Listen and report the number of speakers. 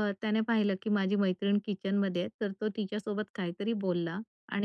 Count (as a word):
one